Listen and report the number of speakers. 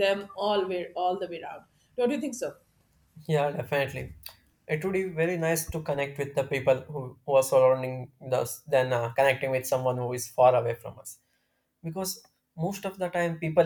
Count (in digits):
2